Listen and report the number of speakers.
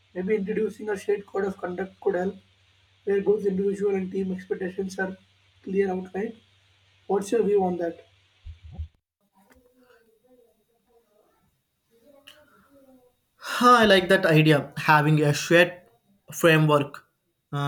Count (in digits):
2